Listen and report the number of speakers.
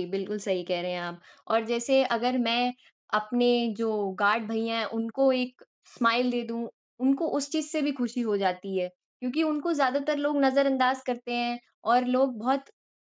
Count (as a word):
one